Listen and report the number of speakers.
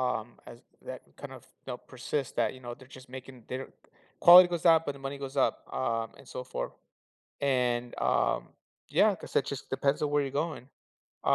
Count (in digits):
1